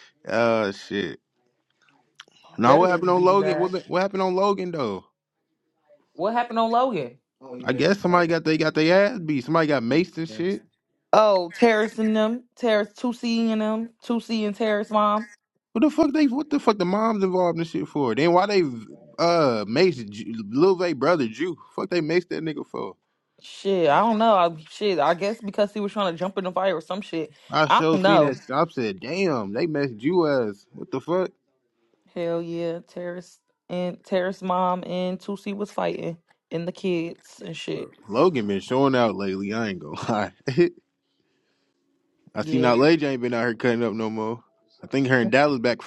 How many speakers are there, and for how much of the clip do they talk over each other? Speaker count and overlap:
2, about 6%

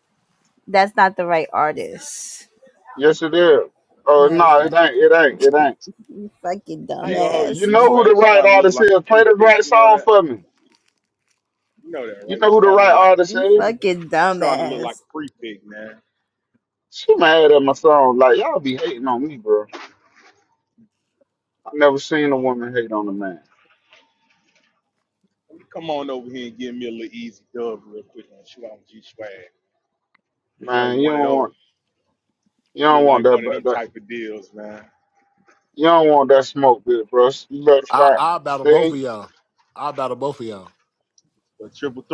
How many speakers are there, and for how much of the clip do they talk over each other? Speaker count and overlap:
4, about 18%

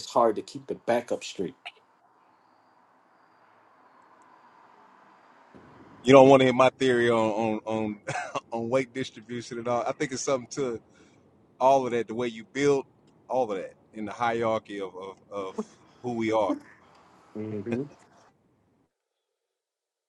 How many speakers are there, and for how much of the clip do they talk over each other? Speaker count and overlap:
2, no overlap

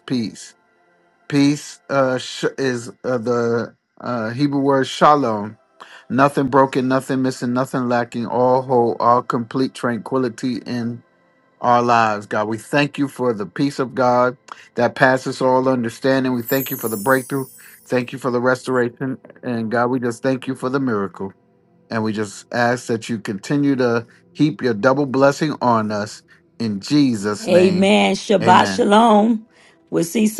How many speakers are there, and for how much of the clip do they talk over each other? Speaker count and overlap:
2, about 3%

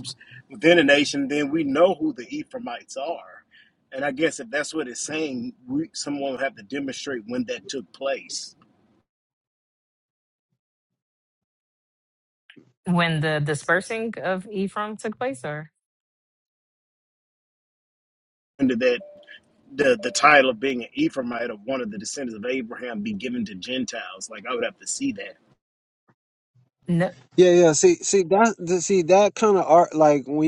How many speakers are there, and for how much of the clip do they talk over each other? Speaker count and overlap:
3, no overlap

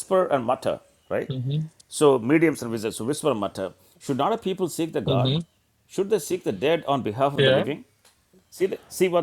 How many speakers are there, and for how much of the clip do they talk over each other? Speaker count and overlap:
2, about 6%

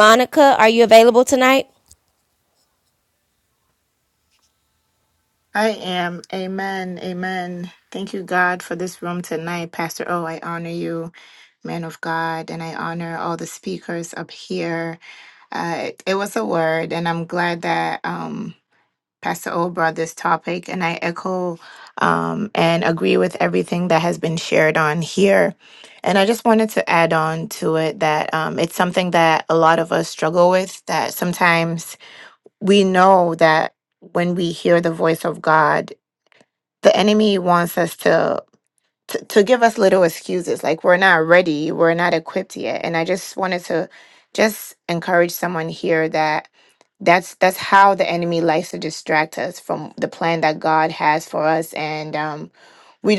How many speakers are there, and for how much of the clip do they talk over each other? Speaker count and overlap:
2, no overlap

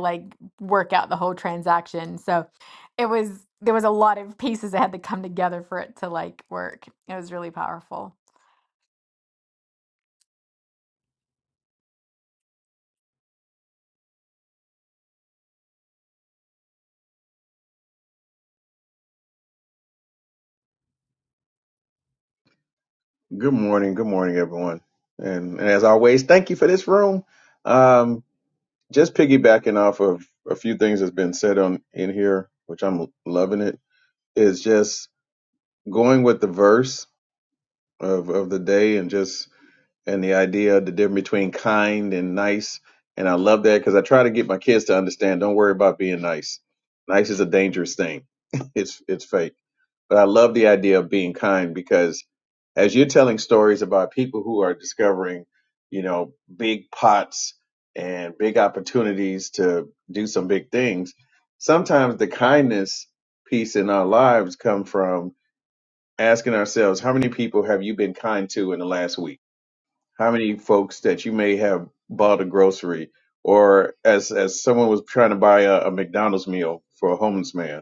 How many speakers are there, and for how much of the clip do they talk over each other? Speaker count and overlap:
2, no overlap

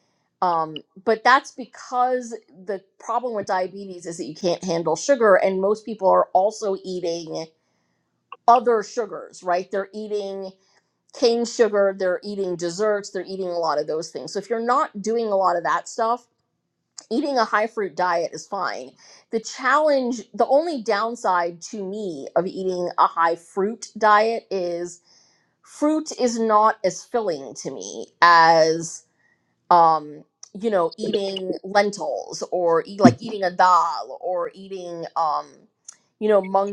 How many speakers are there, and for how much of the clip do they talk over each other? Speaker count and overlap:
1, no overlap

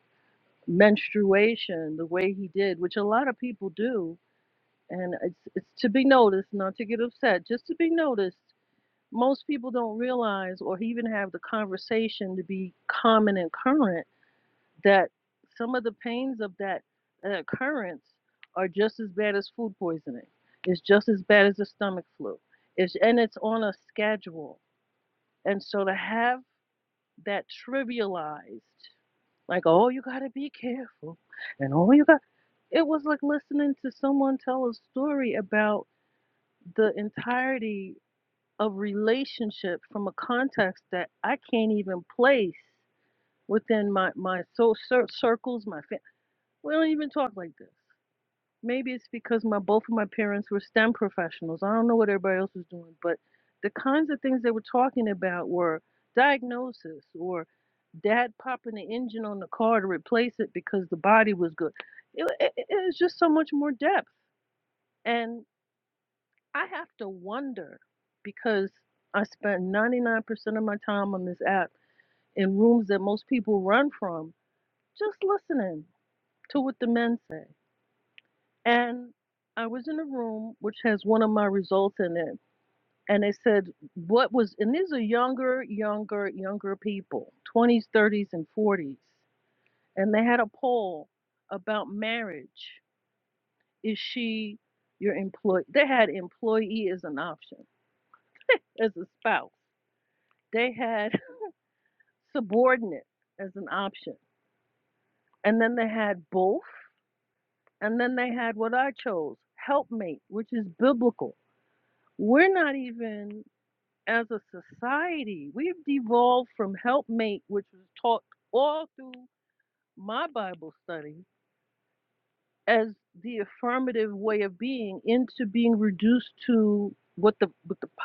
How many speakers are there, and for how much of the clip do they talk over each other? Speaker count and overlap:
1, no overlap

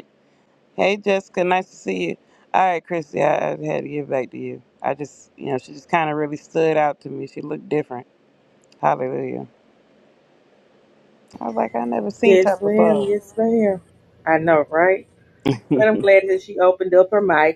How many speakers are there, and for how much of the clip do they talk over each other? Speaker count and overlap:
2, about 5%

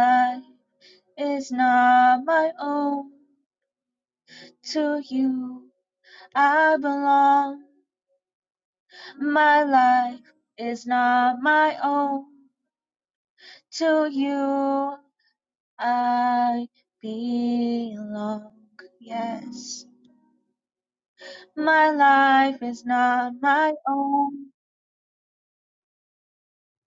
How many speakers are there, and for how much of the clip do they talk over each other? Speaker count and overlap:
1, no overlap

